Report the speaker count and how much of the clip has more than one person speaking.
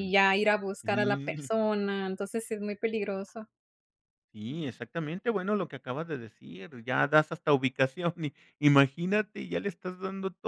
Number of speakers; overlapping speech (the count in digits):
2, about 6%